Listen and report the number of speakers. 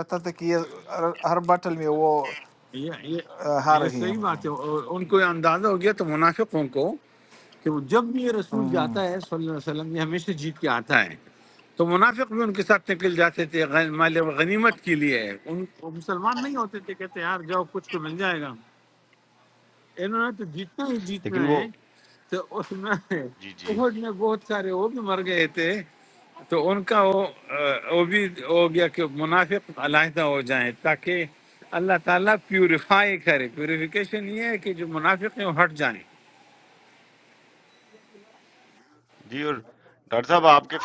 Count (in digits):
3